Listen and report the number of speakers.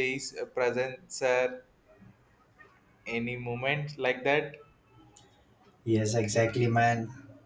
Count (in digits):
2